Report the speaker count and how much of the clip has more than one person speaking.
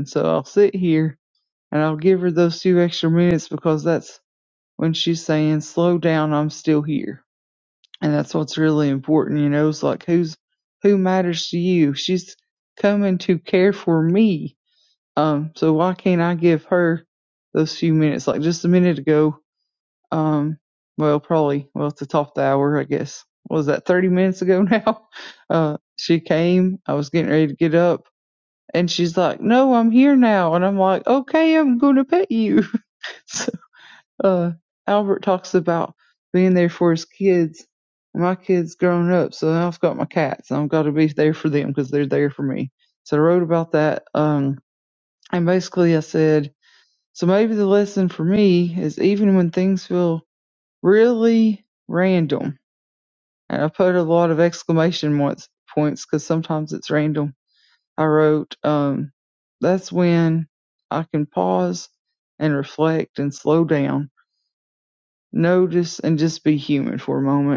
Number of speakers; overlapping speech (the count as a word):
one, no overlap